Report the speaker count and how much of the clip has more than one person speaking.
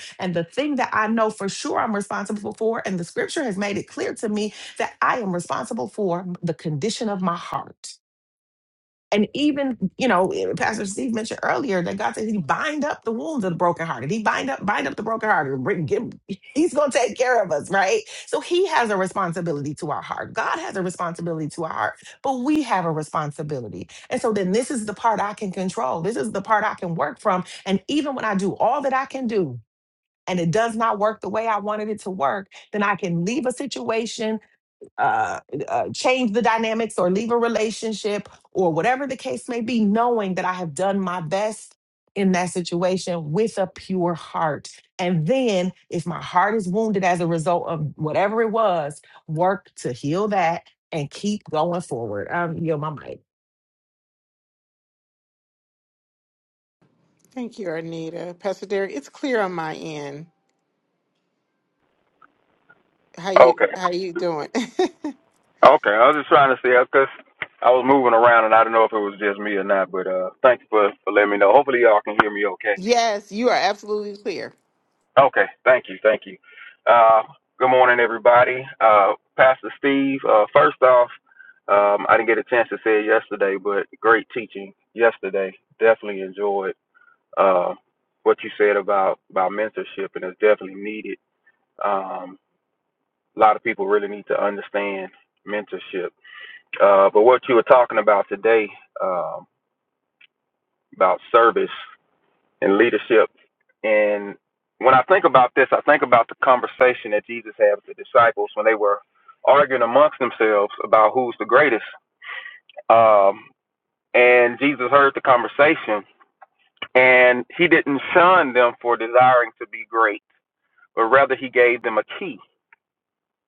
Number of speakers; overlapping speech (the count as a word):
three, under 1%